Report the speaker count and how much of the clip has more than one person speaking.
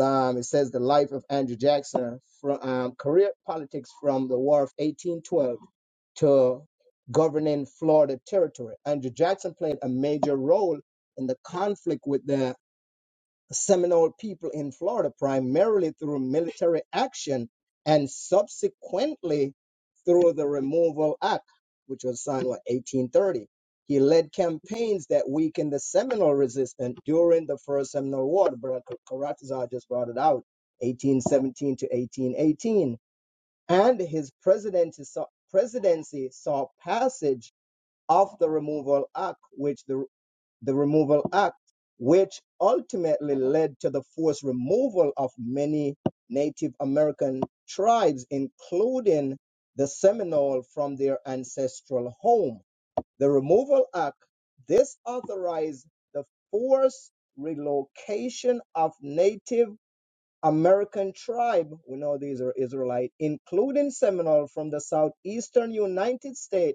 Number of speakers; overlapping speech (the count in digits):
1, no overlap